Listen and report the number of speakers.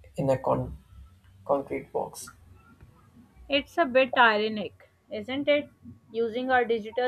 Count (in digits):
2